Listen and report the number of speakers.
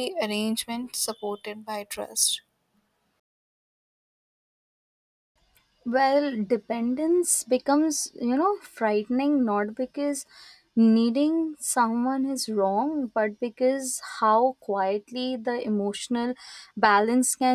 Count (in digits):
2